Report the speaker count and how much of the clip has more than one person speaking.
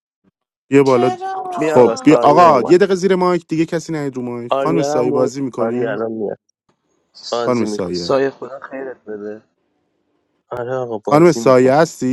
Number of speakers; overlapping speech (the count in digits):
4, about 35%